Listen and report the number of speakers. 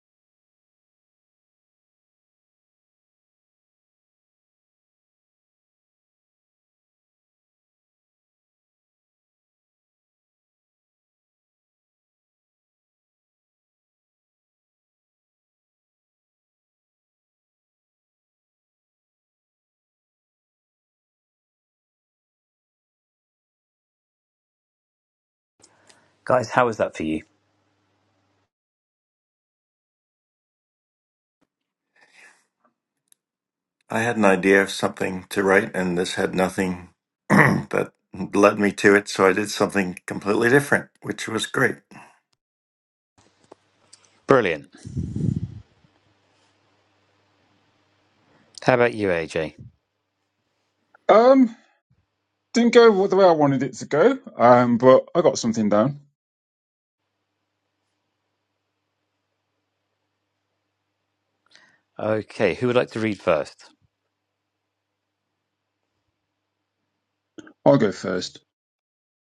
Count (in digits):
3